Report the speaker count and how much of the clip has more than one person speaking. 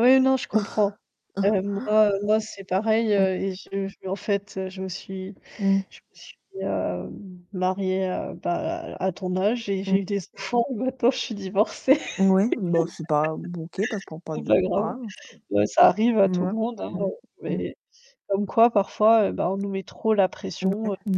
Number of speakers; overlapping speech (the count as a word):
two, about 10%